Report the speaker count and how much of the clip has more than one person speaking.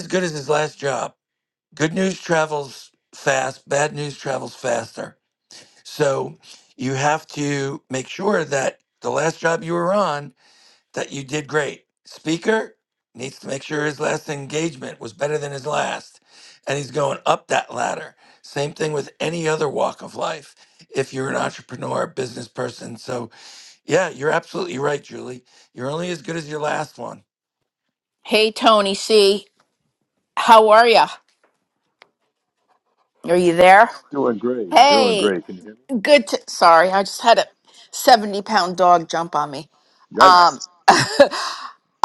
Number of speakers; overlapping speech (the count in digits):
3, about 2%